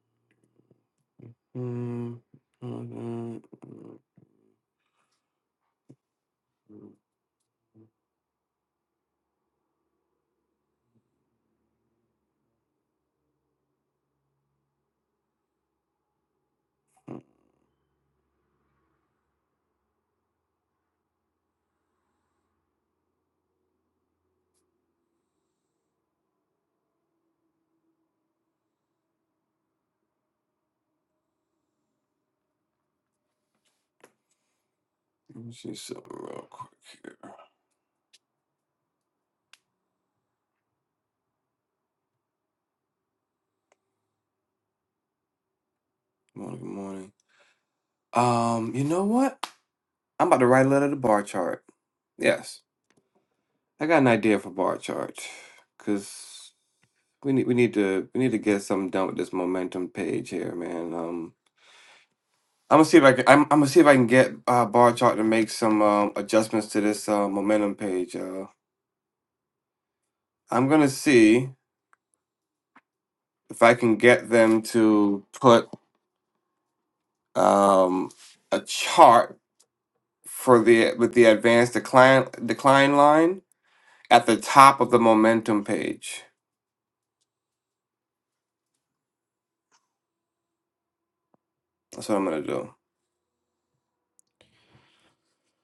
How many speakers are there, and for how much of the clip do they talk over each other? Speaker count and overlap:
1, no overlap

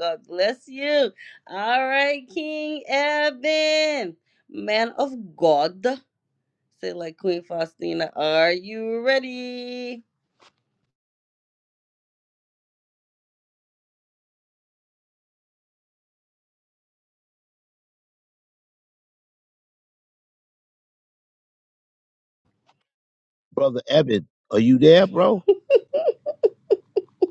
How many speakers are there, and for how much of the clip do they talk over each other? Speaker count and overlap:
2, no overlap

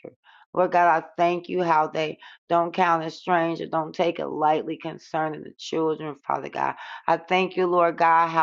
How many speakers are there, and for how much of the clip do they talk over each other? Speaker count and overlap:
1, no overlap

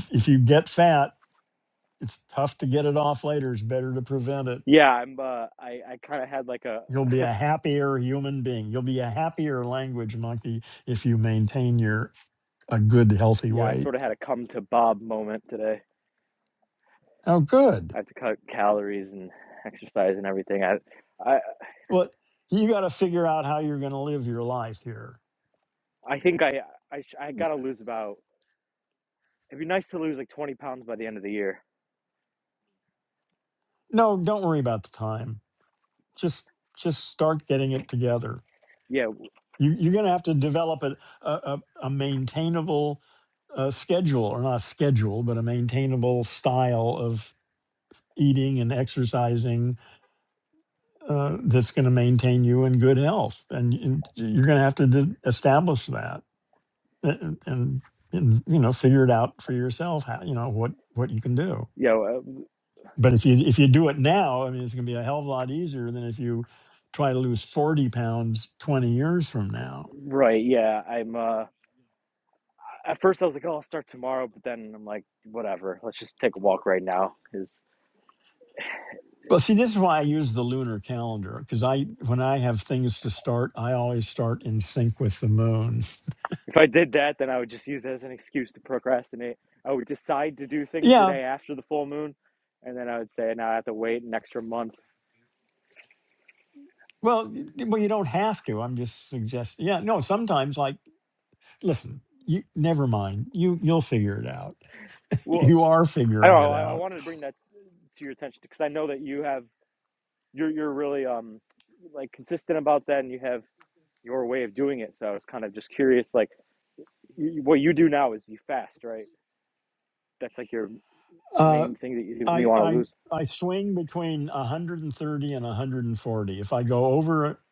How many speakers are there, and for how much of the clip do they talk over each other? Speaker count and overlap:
2, about 2%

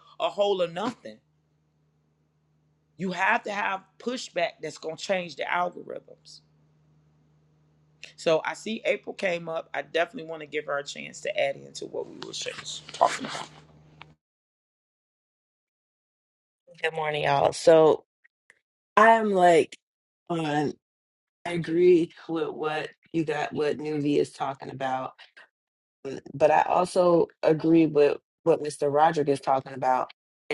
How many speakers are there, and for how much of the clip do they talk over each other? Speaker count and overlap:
2, no overlap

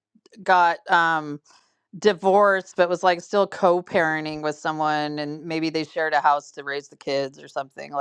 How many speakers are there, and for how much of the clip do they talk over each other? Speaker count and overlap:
1, no overlap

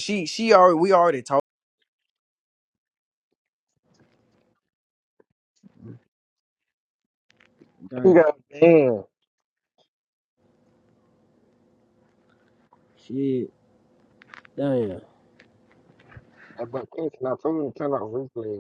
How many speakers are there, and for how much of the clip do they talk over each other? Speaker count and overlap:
3, about 1%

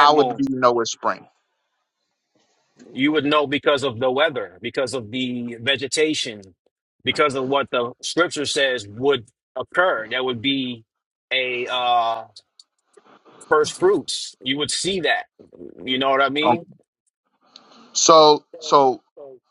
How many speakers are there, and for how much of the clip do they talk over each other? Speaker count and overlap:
2, about 3%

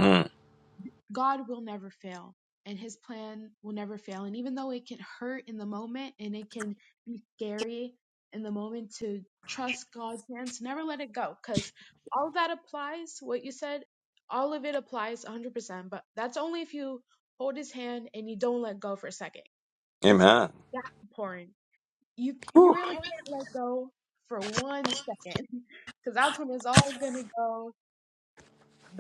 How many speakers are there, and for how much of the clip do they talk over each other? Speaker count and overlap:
2, about 2%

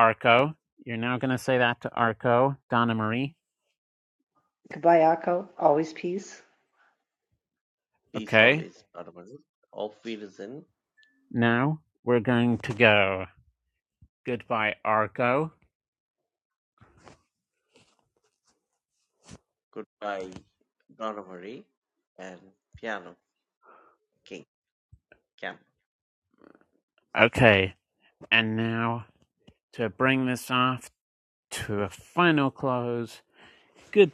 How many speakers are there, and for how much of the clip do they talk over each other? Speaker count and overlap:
3, about 1%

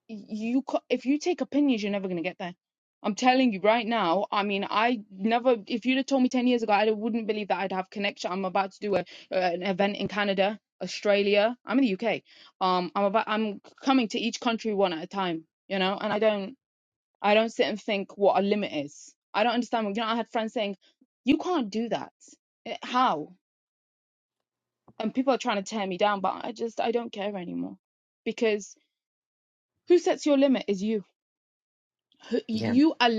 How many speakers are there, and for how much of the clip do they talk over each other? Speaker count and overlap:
1, no overlap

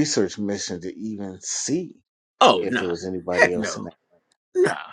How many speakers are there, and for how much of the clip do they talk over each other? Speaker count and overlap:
2, about 19%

